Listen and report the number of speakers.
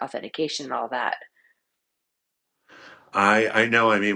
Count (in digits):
2